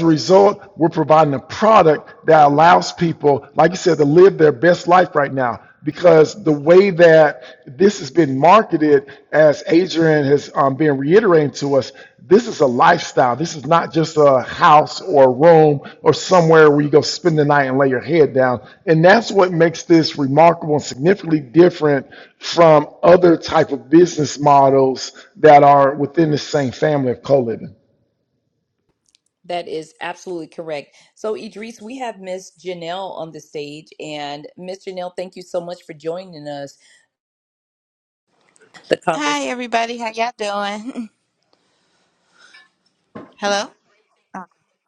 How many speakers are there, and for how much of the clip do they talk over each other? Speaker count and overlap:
3, under 1%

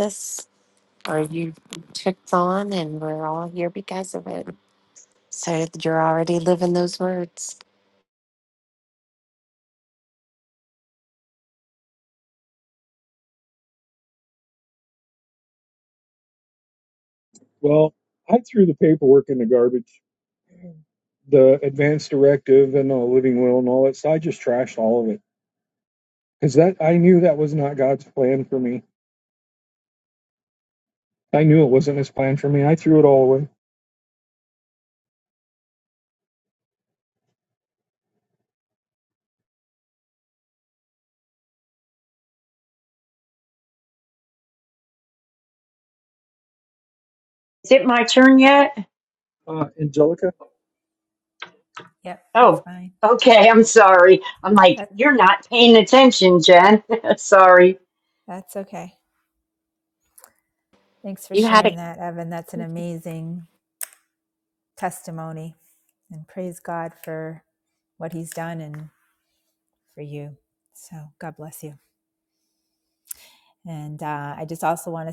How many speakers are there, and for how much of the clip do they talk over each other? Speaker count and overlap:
4, about 1%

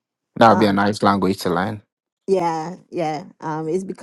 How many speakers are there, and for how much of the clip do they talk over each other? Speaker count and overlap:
2, about 8%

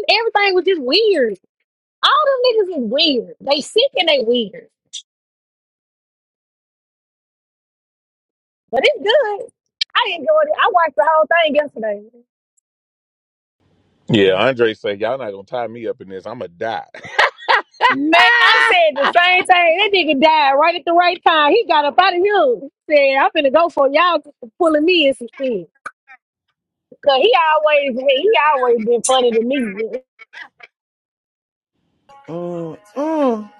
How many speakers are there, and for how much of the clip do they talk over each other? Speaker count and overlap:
3, no overlap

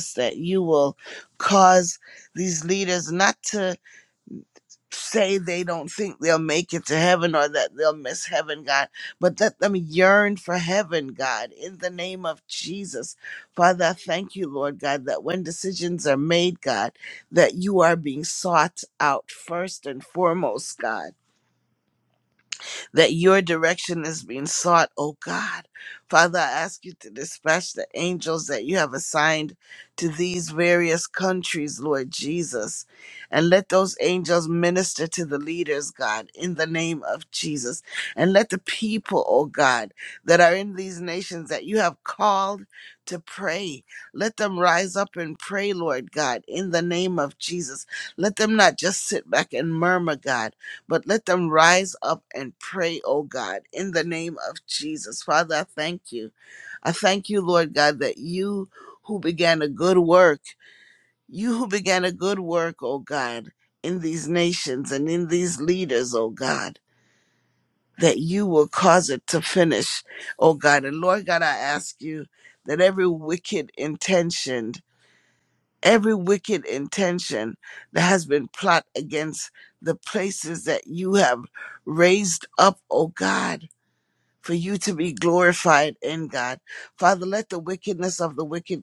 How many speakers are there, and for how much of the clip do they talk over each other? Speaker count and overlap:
1, no overlap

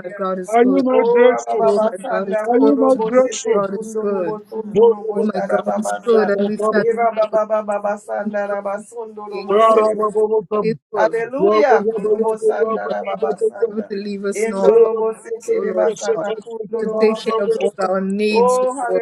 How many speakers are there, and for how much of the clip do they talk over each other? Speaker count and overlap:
3, about 70%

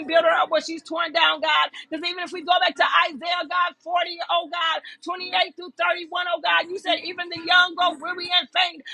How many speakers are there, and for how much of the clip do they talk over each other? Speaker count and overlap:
1, no overlap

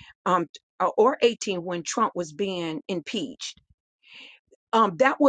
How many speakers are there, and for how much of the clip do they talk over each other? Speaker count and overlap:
1, no overlap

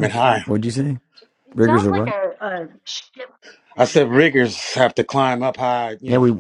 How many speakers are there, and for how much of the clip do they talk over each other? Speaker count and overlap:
3, about 17%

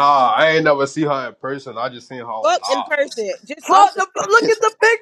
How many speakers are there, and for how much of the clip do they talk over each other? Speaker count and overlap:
3, about 17%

